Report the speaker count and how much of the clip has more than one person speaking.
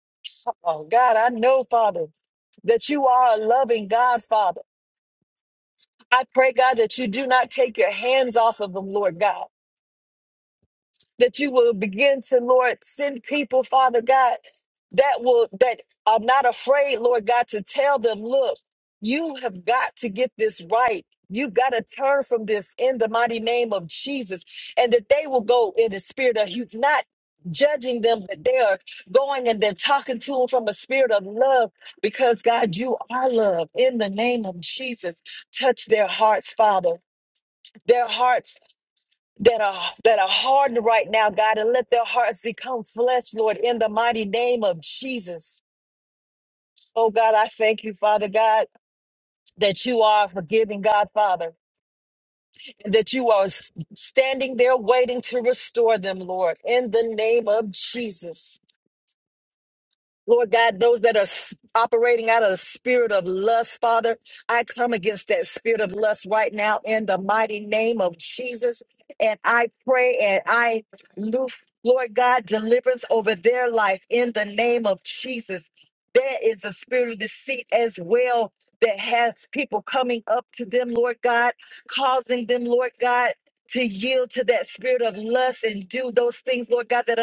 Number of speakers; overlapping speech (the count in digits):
1, no overlap